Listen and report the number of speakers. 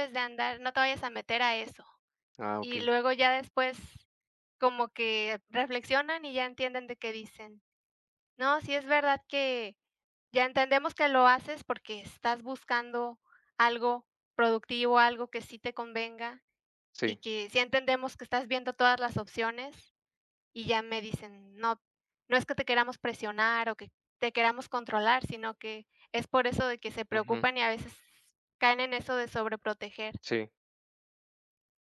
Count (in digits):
2